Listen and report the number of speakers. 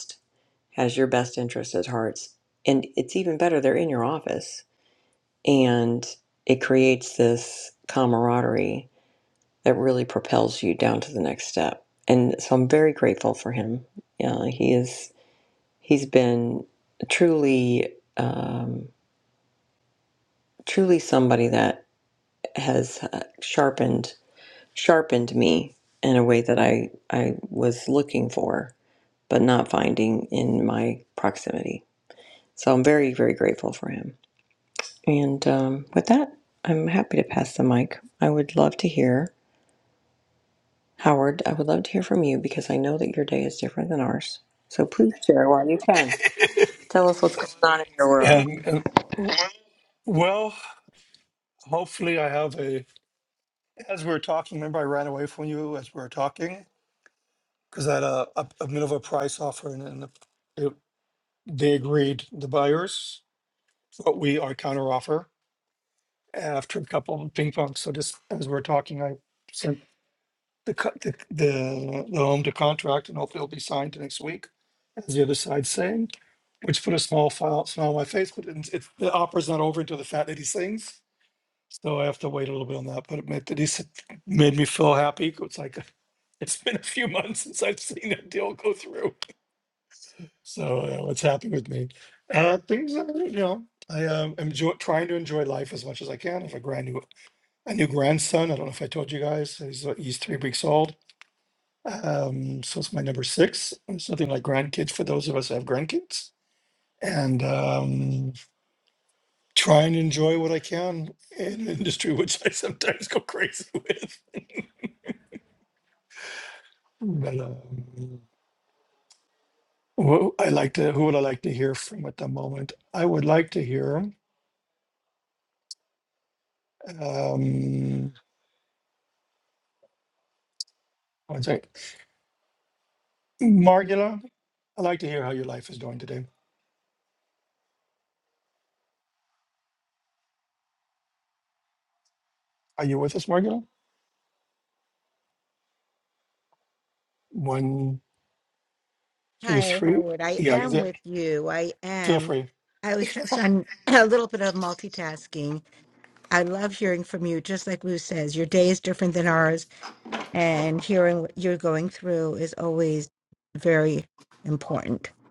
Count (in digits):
3